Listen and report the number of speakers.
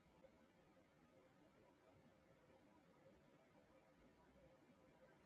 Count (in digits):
0